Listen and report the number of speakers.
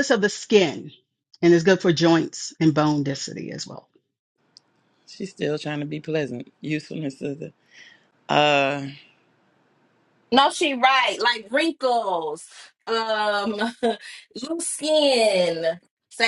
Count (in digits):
3